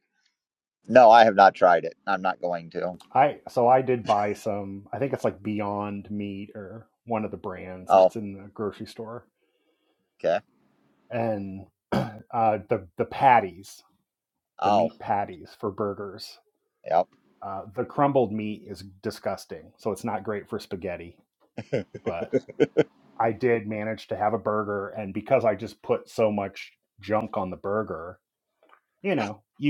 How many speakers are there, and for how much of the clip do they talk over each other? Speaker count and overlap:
two, about 2%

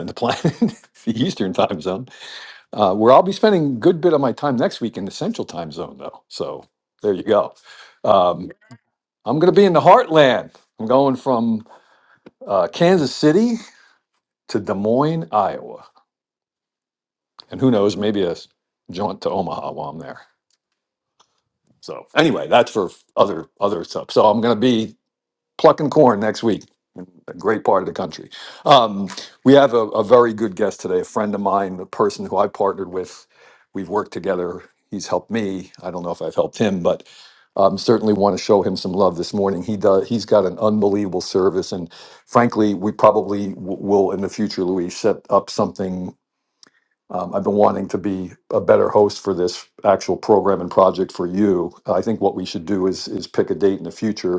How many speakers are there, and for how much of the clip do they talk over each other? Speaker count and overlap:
one, no overlap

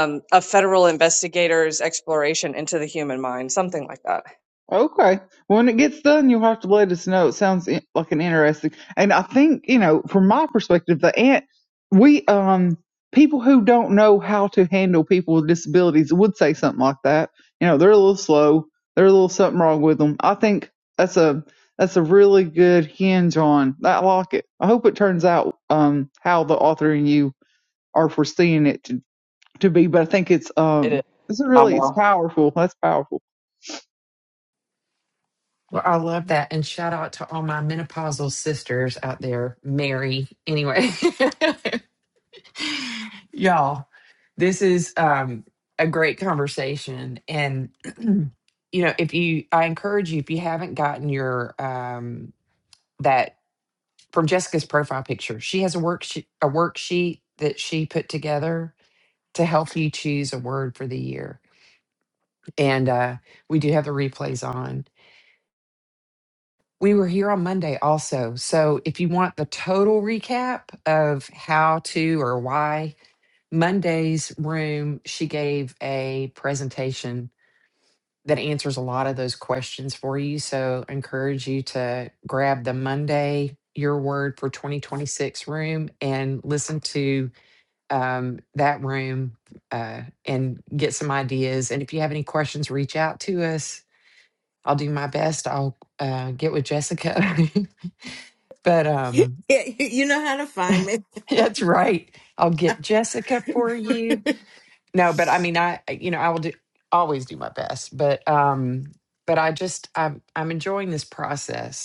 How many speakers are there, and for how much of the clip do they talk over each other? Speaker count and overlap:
four, about 1%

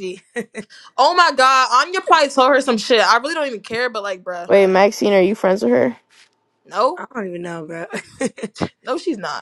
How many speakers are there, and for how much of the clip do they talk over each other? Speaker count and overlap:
three, under 1%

